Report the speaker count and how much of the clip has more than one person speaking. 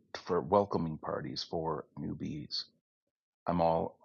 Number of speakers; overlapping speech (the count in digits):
1, no overlap